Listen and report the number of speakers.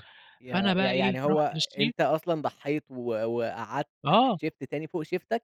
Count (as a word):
two